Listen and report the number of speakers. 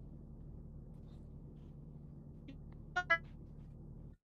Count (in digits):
0